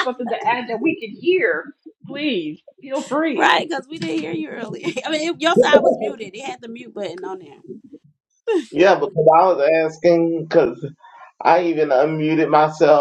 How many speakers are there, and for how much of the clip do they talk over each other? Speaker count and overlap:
3, about 2%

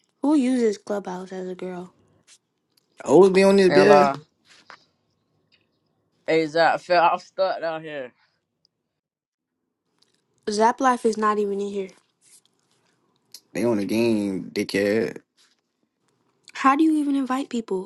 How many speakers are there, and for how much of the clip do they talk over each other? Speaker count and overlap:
3, about 3%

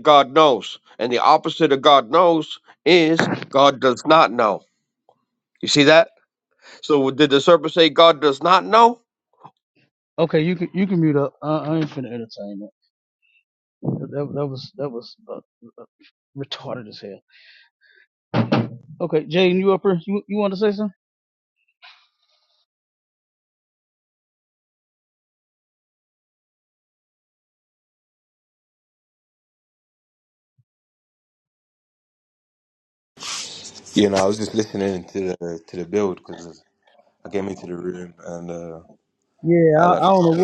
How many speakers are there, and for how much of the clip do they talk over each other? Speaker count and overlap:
3, about 2%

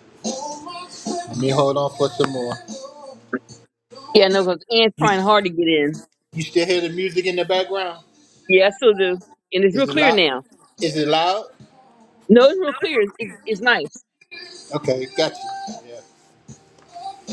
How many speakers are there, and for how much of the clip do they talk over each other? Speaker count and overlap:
2, about 4%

